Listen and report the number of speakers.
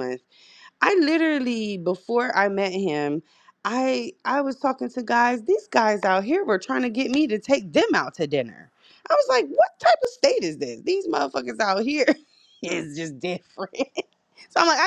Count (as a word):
one